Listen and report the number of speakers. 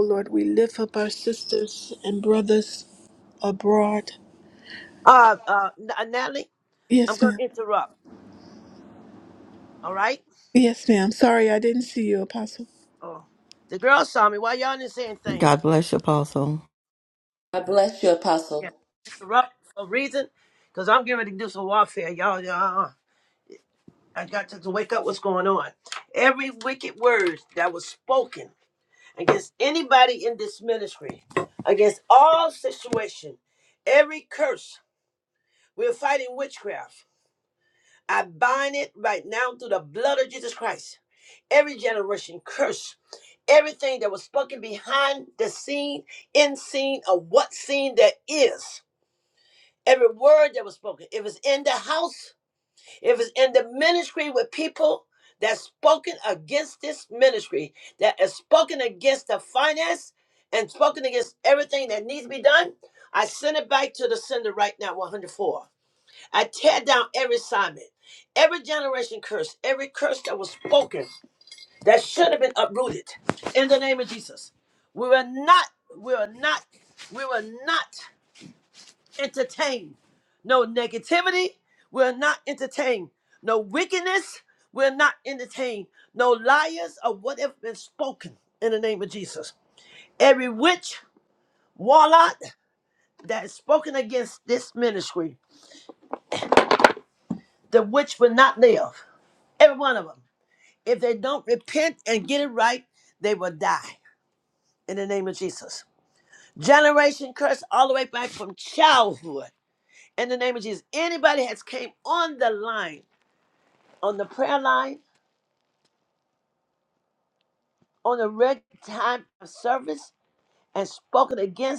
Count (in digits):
4